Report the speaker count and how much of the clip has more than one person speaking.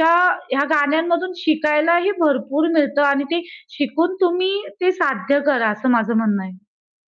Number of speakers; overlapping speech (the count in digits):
1, no overlap